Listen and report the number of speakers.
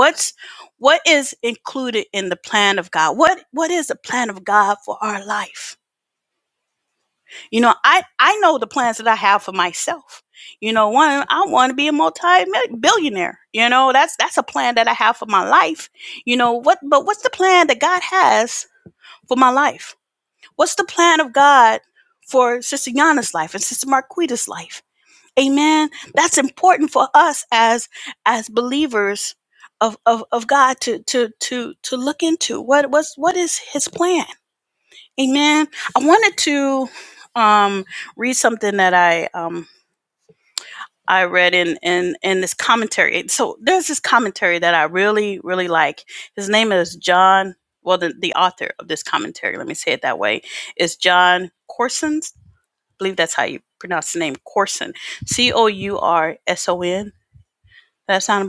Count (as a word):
one